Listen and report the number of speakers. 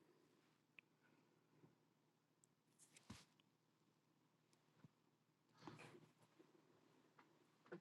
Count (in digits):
0